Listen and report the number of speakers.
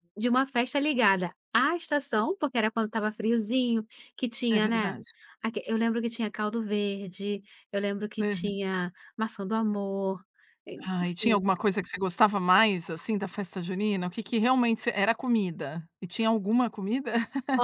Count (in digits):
2